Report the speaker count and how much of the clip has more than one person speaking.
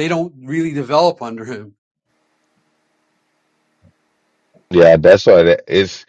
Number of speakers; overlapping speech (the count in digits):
2, no overlap